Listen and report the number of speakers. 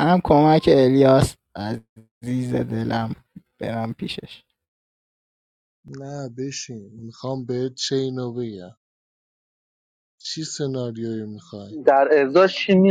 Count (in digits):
3